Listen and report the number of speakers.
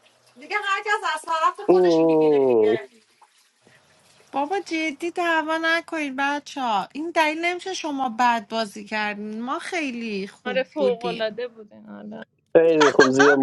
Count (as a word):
four